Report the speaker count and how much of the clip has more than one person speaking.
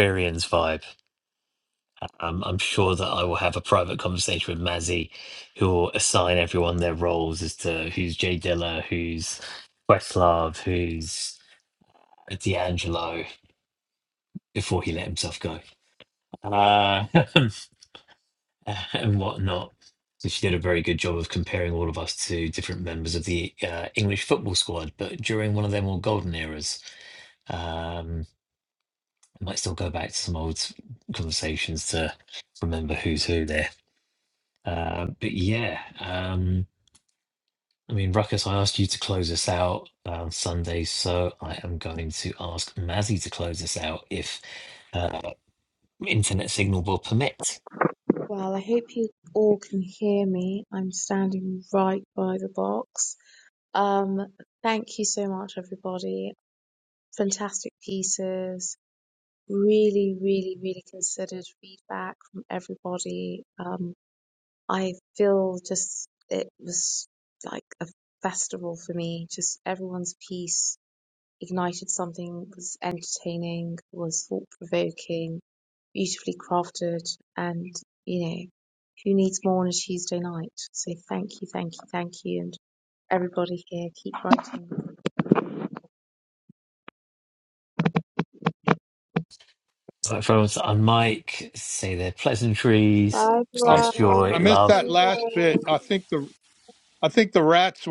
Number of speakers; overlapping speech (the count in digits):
3, about 2%